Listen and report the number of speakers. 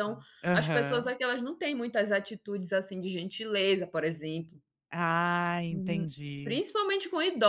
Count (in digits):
2